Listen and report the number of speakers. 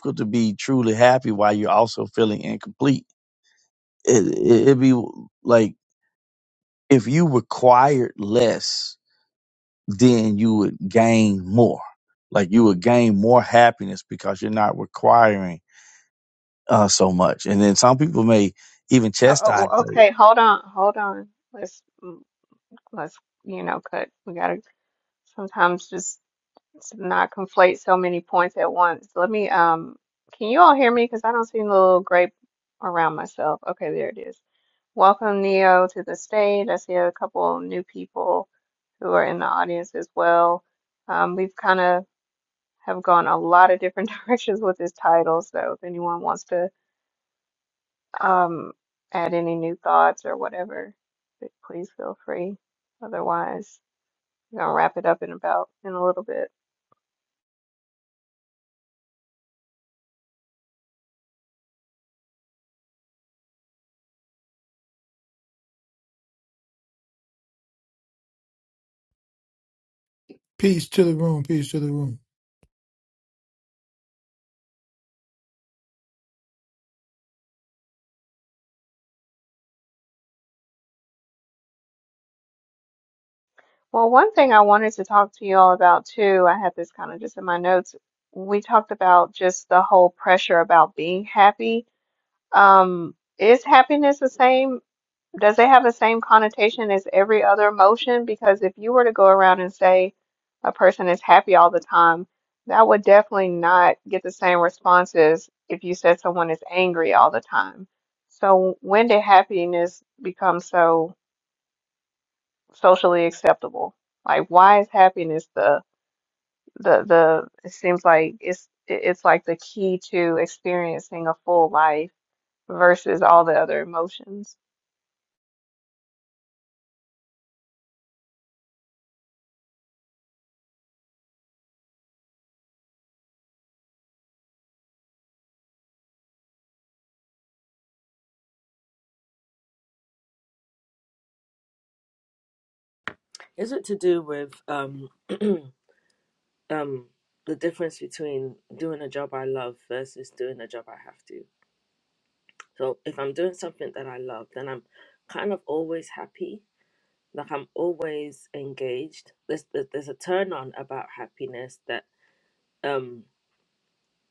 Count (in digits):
4